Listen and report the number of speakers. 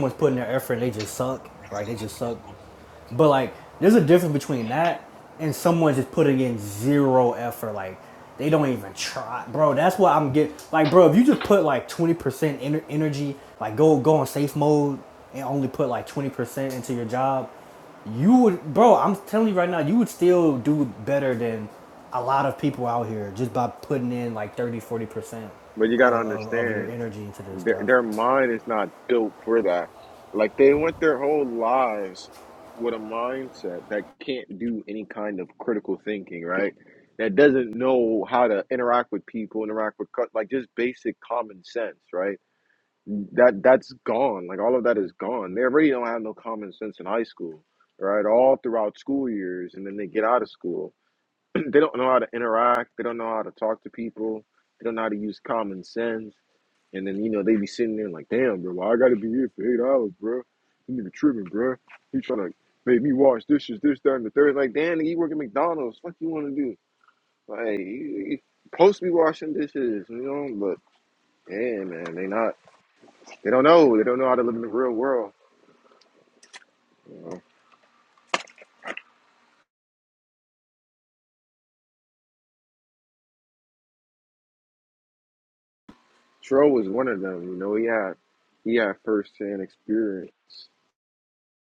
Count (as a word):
two